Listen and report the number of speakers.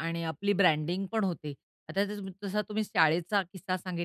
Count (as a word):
one